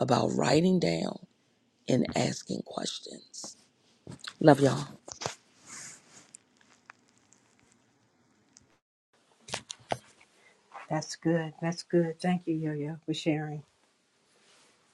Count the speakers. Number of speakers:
two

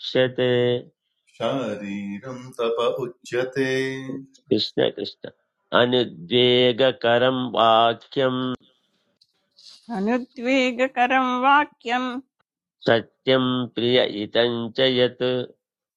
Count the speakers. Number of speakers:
three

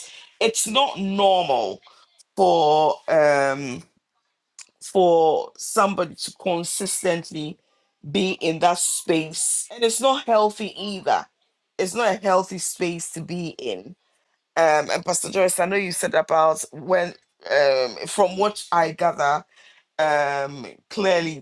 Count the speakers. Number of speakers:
one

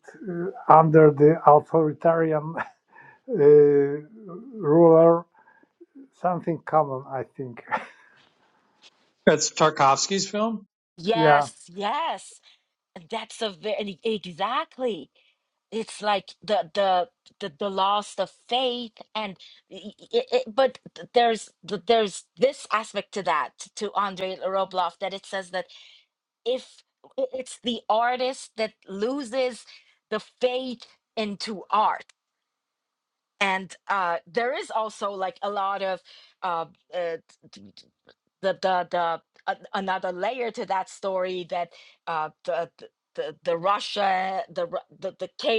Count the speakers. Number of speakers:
three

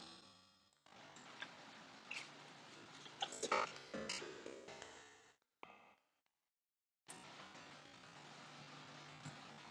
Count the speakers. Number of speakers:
zero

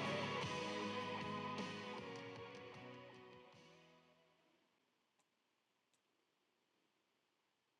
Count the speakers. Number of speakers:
zero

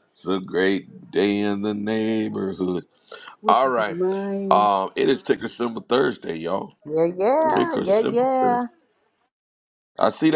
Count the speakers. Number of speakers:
three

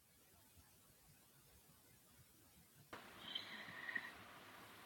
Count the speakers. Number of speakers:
zero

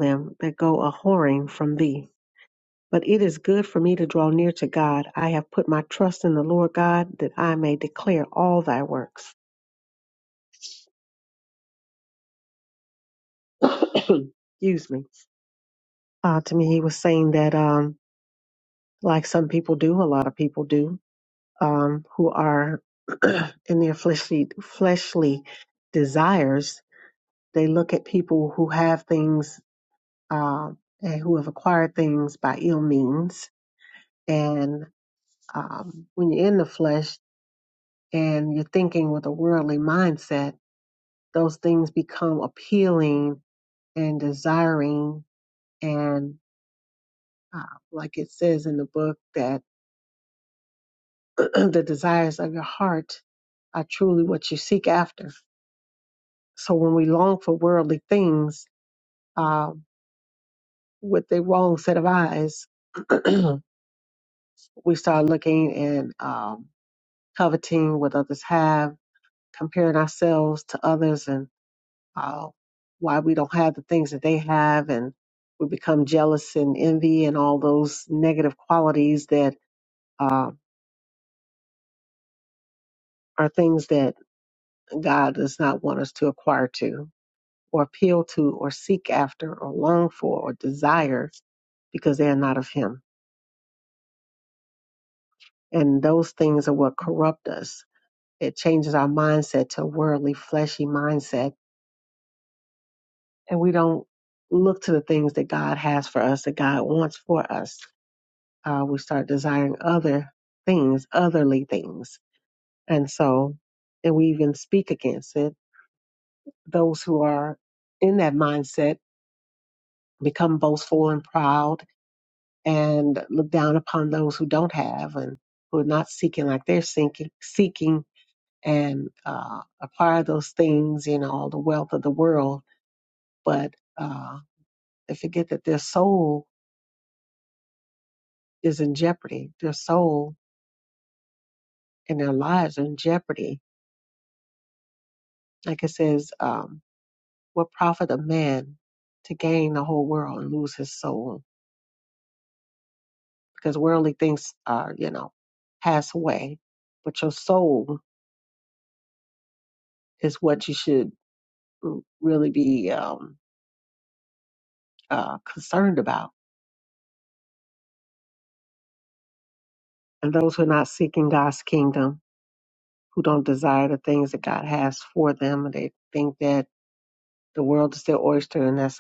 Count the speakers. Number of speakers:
one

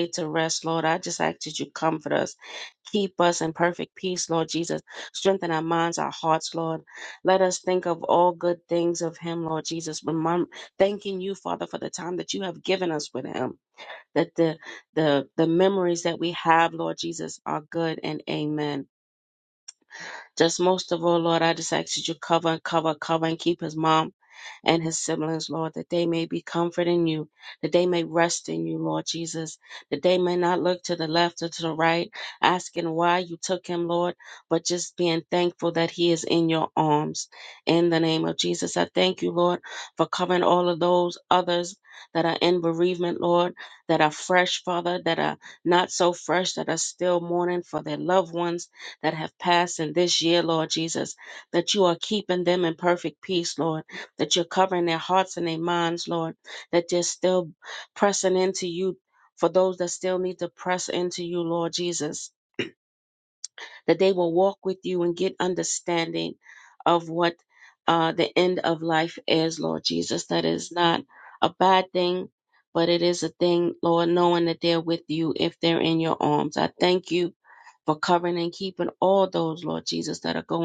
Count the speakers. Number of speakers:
one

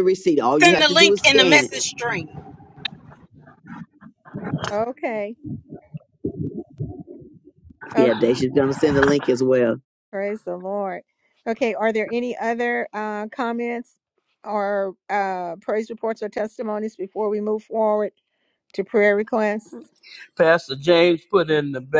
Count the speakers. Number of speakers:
four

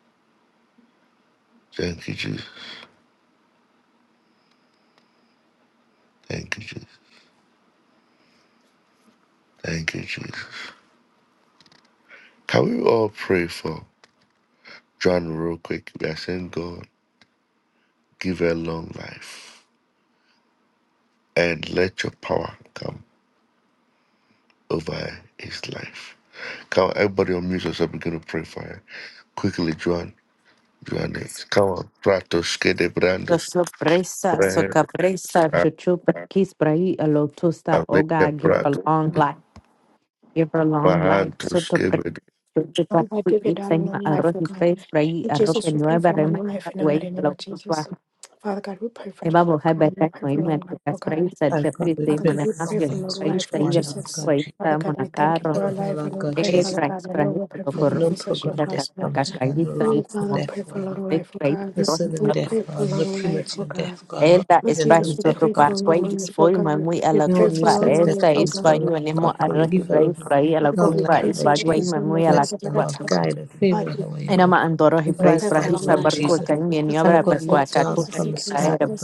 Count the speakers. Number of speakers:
four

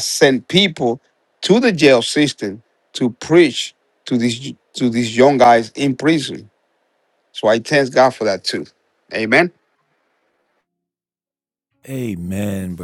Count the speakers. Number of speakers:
two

